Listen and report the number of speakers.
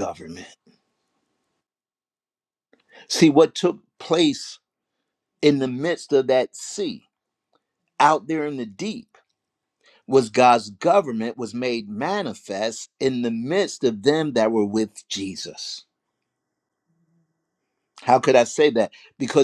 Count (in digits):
1